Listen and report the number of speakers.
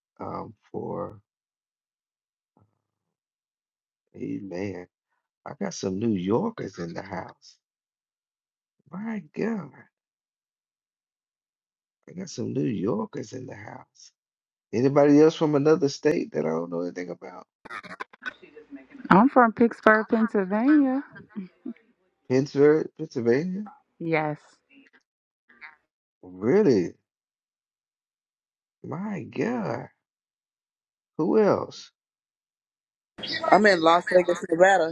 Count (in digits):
3